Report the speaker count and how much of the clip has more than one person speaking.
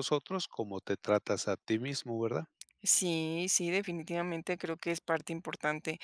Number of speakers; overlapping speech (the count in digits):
2, no overlap